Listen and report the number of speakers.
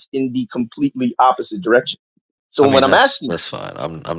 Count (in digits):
2